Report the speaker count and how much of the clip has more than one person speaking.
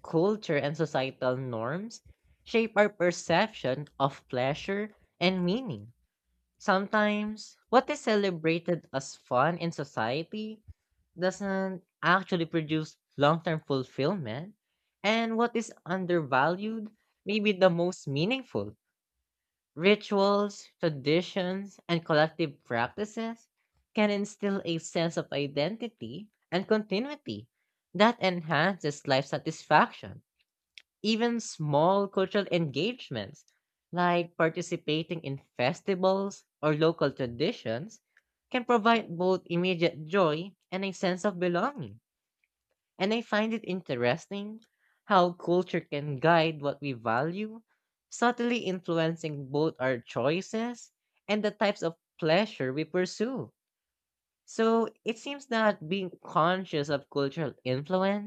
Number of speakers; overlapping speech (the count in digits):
1, no overlap